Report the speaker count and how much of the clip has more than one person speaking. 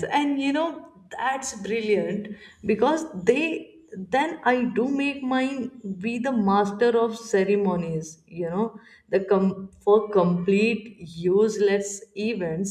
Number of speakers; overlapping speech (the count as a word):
one, no overlap